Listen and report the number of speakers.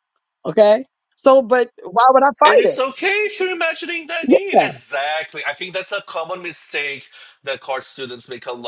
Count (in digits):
2